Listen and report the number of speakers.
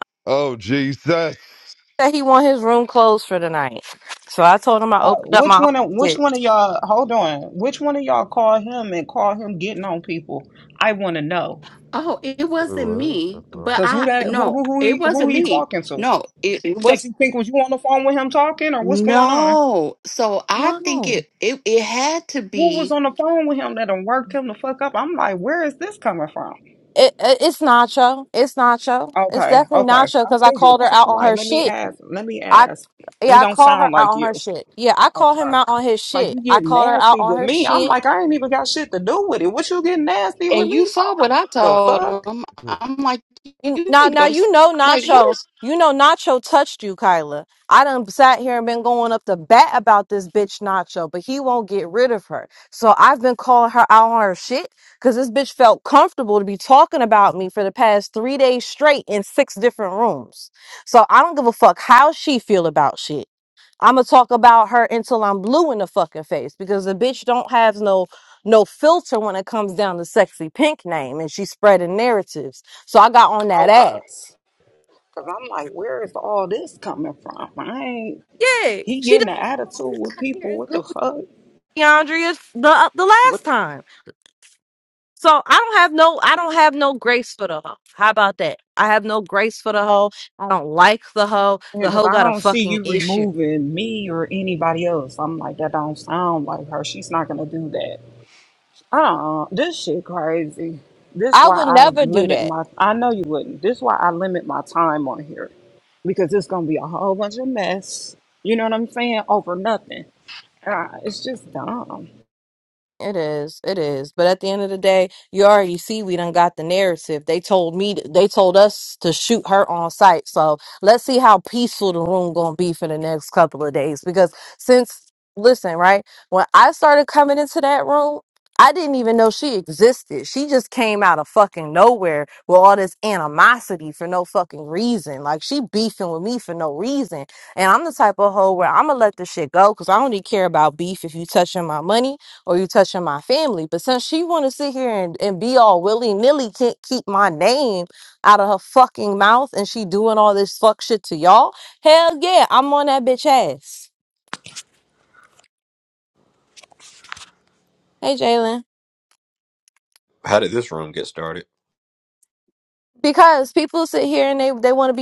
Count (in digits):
5